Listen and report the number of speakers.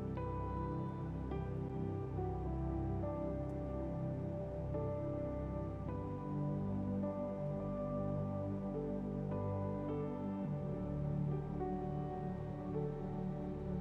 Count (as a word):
zero